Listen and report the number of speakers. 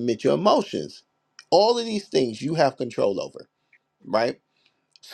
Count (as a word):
one